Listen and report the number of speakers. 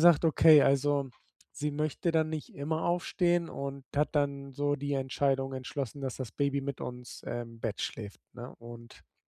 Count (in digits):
1